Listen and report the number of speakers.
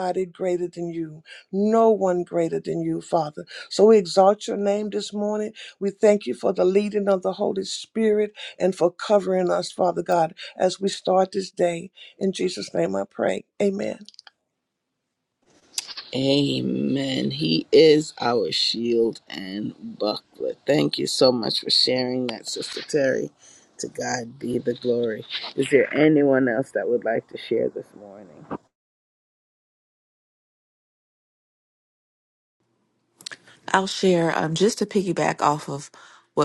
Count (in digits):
3